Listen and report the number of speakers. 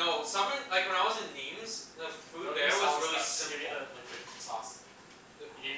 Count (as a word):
two